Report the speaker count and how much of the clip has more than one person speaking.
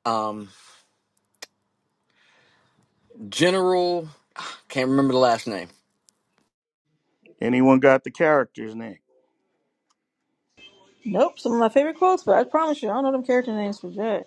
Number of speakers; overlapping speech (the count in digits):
3, no overlap